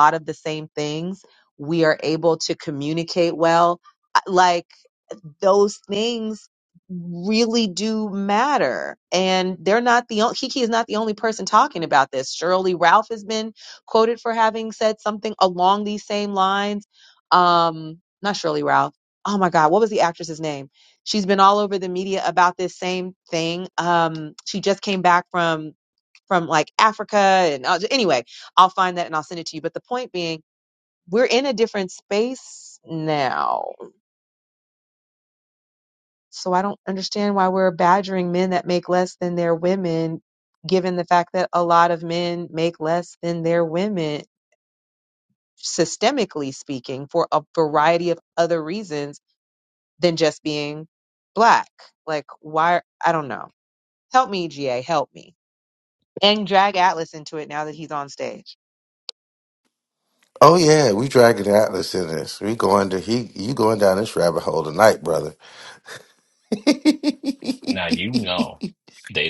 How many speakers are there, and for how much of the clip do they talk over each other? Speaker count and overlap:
3, no overlap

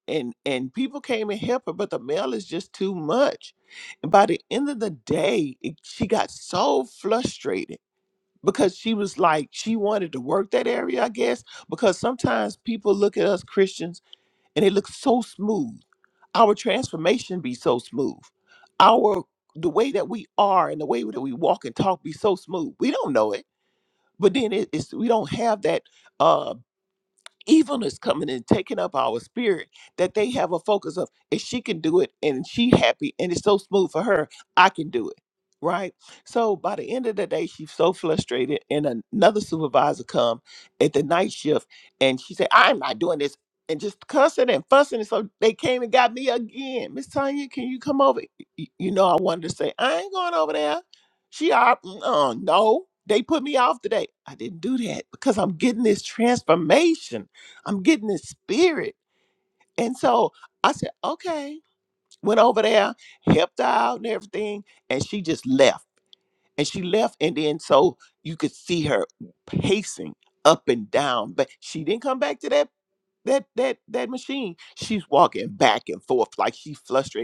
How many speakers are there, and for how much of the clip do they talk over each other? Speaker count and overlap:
1, no overlap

